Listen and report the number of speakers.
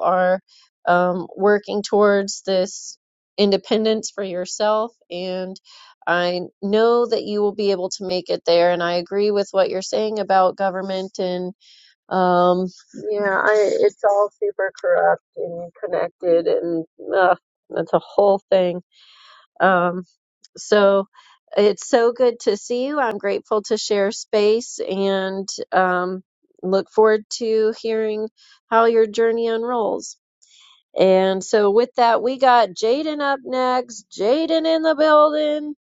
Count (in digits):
1